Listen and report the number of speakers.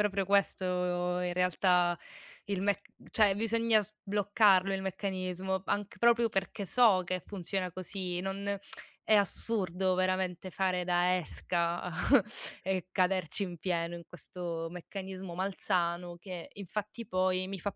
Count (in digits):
1